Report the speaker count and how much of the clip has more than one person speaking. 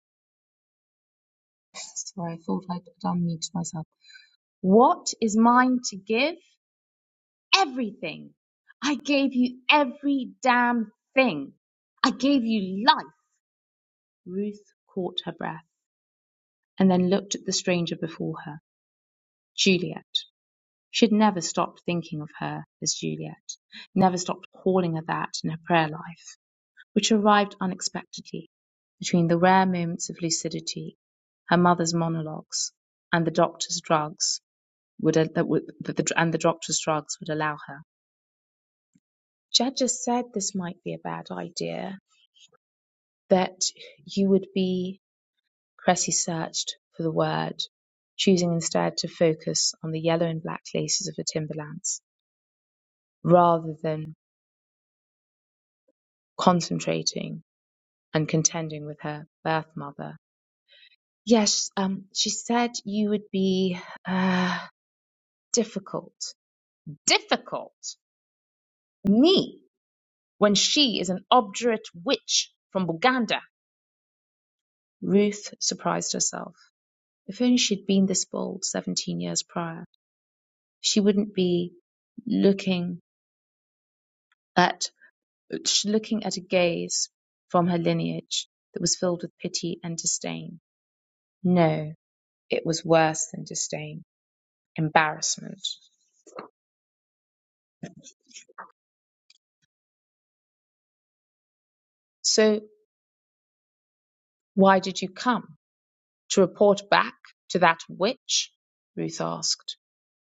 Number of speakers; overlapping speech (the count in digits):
1, no overlap